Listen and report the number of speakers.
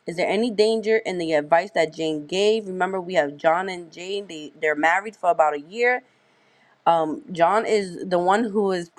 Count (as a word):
one